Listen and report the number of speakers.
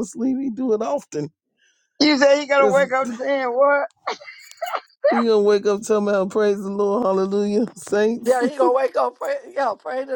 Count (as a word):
three